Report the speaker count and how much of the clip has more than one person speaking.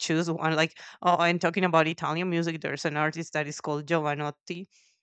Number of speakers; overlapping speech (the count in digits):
1, no overlap